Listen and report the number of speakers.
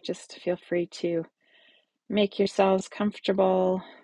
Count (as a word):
one